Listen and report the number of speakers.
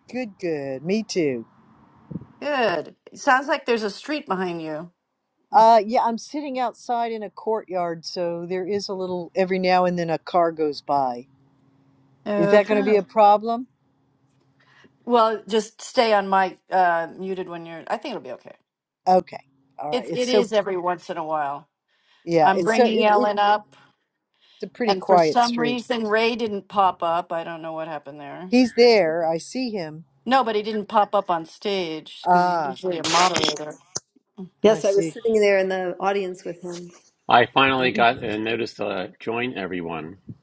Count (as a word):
four